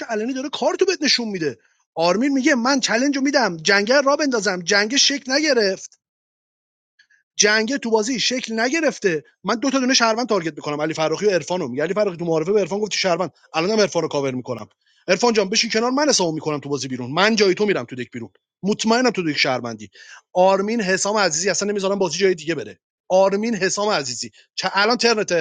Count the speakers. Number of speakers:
one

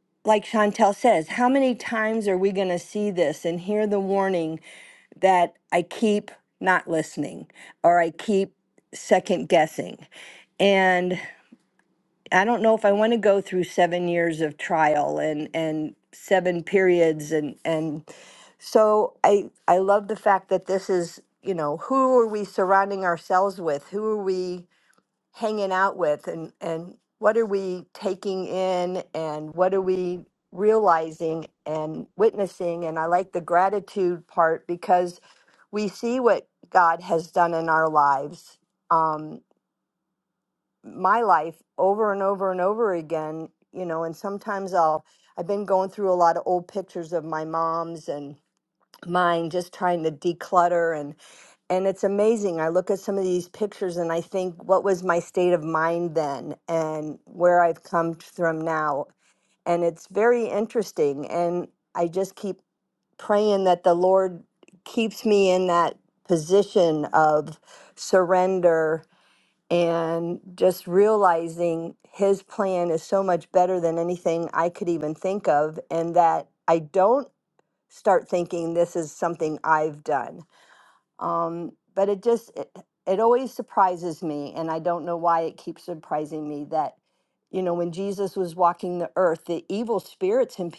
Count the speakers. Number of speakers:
one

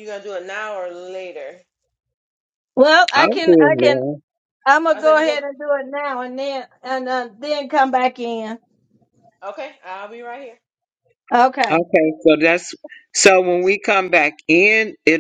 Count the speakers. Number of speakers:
three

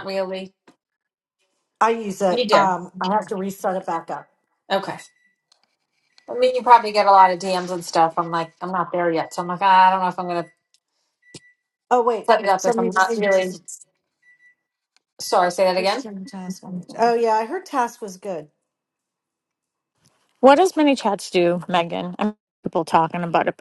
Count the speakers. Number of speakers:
three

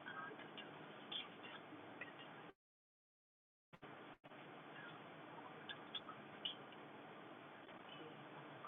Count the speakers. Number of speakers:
zero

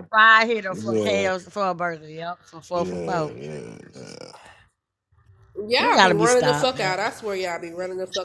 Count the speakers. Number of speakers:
three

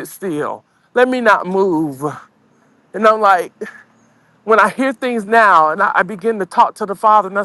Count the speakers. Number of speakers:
one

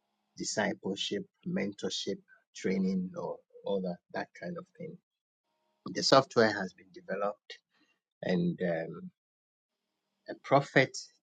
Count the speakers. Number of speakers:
one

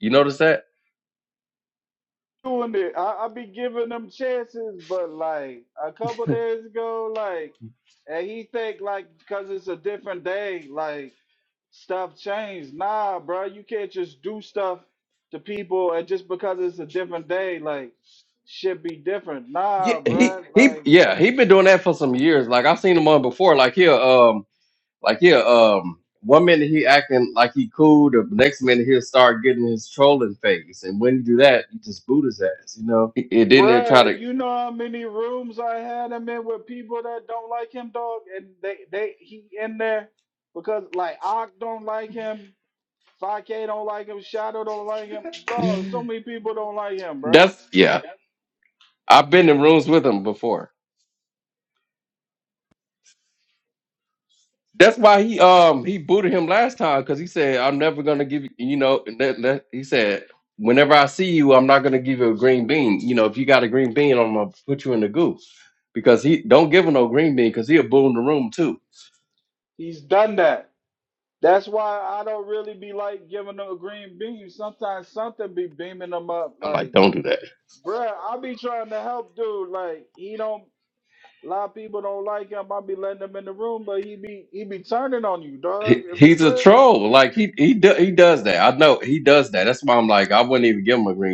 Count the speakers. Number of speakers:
two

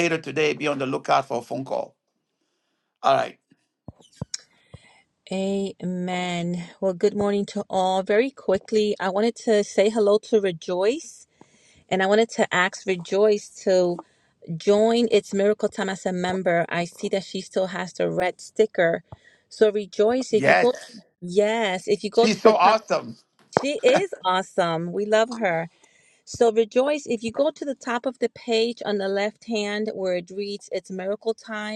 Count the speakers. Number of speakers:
two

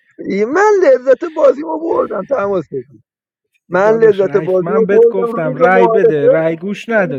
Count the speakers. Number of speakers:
two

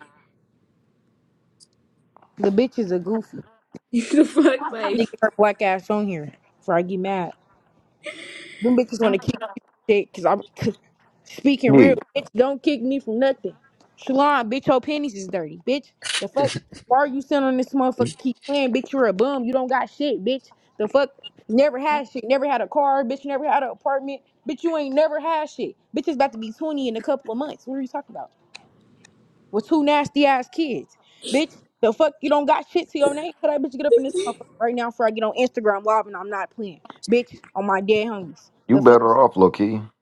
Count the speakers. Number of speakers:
three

